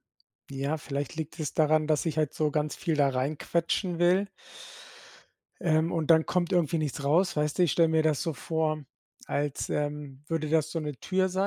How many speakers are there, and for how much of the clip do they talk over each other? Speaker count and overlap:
1, no overlap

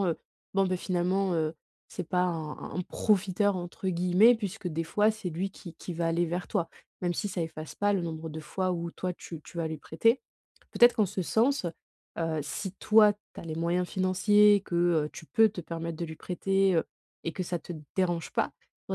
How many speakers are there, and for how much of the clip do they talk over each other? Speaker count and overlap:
1, no overlap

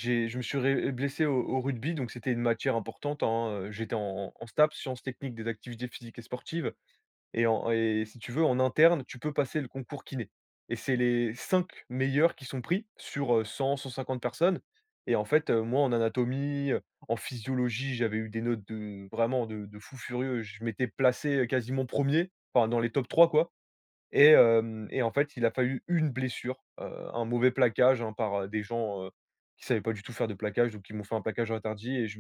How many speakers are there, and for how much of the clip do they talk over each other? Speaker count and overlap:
1, no overlap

